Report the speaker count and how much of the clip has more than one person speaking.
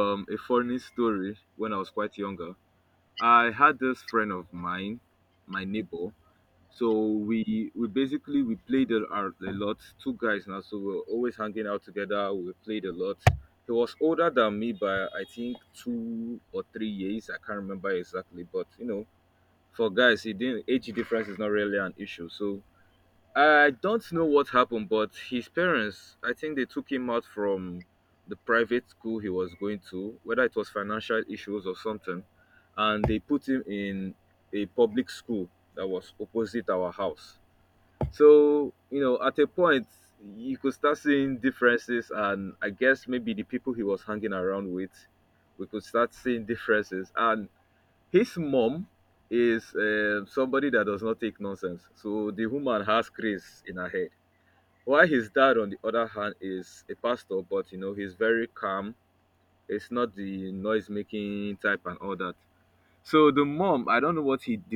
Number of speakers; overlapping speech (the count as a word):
one, no overlap